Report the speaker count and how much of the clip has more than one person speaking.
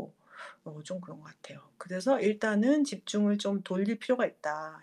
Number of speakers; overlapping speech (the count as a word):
one, no overlap